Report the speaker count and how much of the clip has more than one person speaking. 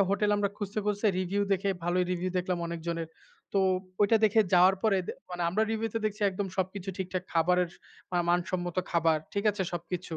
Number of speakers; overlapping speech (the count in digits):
1, no overlap